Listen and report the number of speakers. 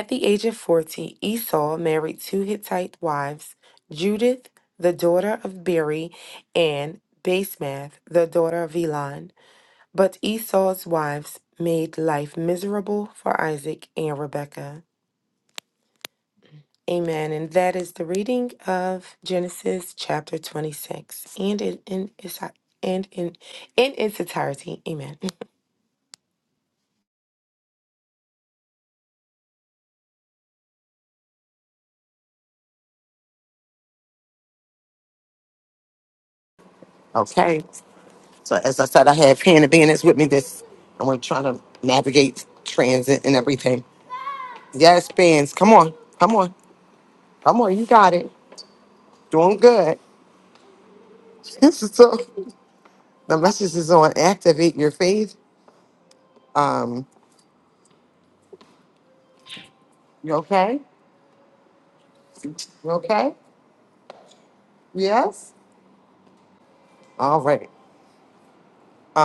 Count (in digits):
2